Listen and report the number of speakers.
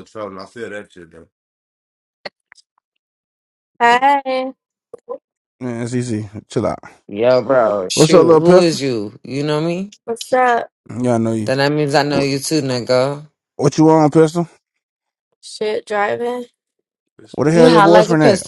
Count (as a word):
four